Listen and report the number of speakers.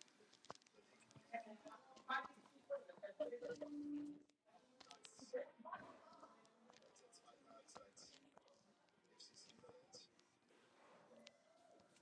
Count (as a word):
zero